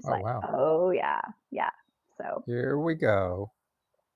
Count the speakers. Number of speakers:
2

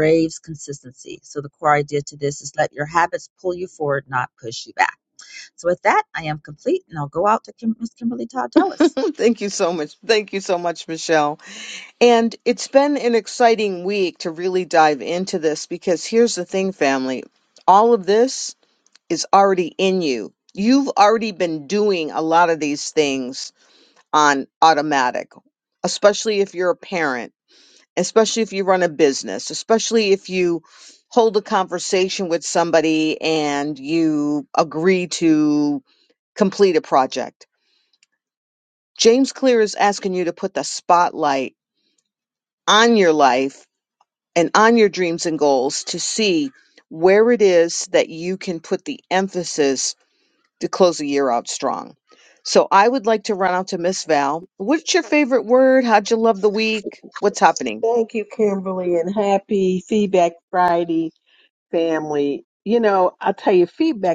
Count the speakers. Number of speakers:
3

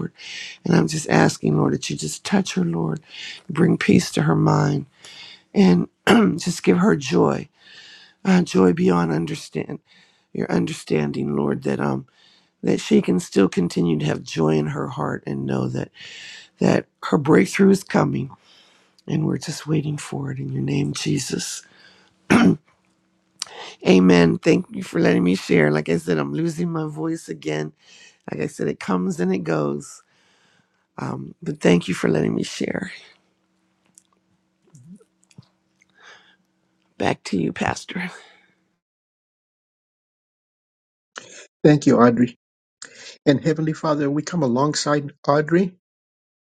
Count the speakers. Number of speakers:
2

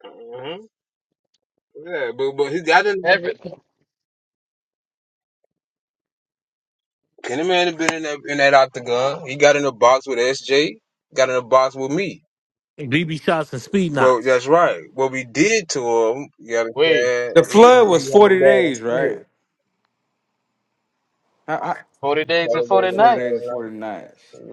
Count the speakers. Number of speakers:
4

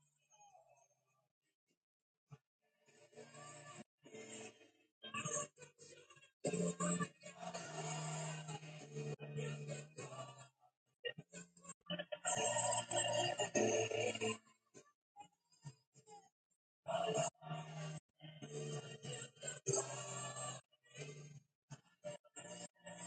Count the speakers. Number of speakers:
0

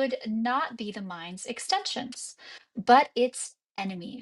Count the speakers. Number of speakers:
1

